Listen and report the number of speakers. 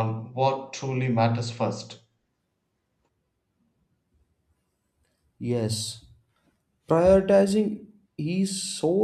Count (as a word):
two